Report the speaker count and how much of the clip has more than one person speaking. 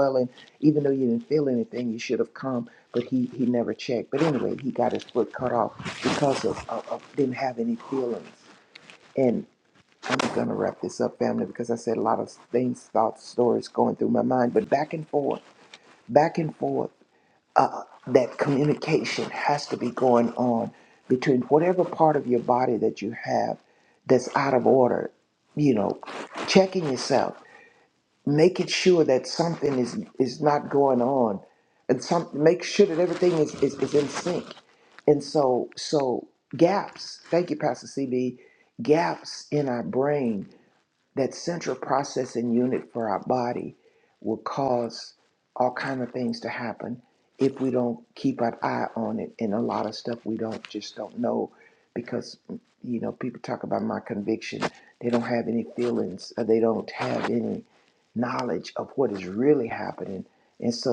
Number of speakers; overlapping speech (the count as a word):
one, no overlap